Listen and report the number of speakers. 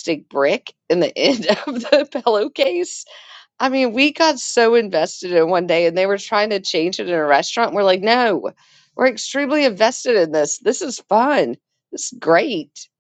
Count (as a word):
one